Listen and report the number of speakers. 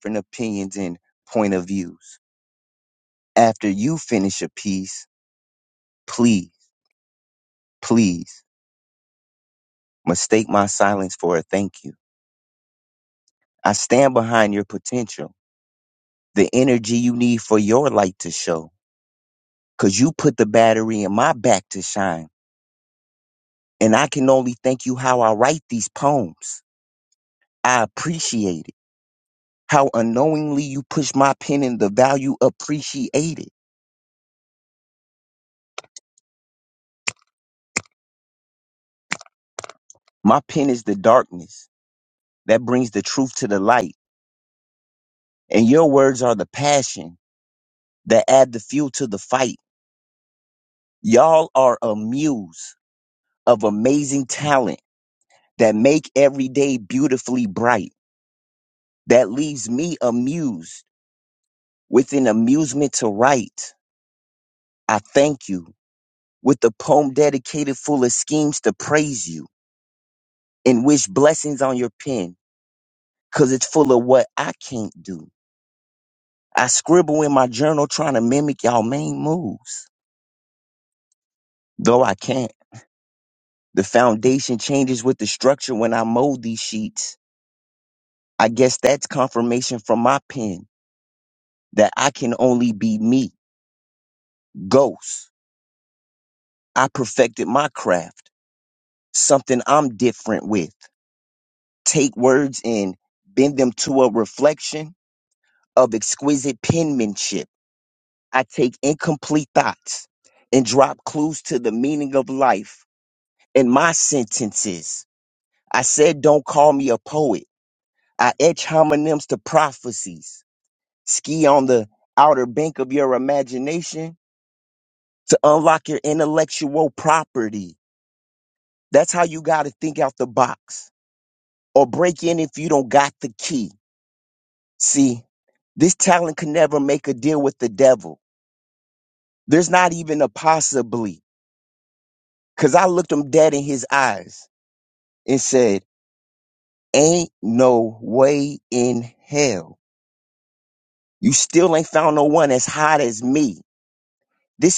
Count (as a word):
one